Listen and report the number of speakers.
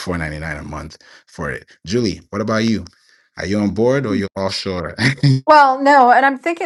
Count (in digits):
2